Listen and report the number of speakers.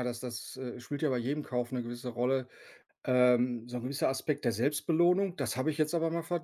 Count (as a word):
one